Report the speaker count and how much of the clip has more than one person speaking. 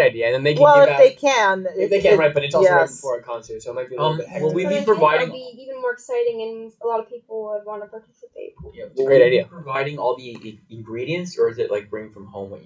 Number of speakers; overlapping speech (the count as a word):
four, about 28%